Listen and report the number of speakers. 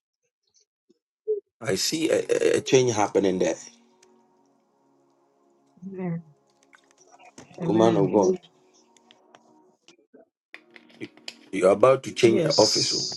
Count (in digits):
2